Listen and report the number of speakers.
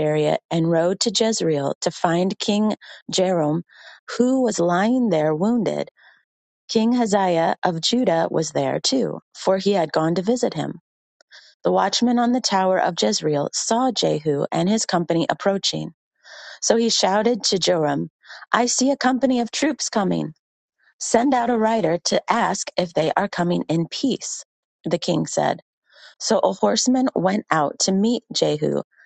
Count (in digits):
1